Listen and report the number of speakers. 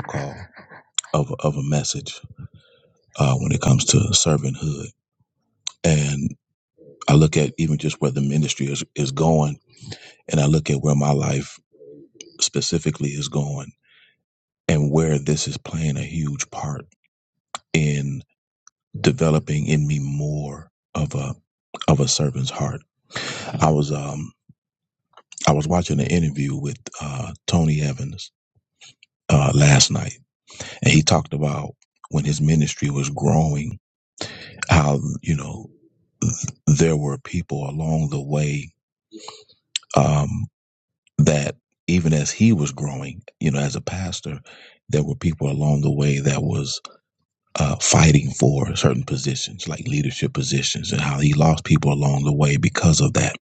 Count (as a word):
one